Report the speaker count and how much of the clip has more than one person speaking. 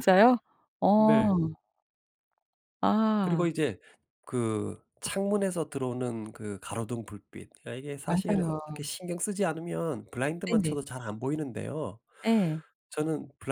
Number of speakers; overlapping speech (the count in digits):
2, about 11%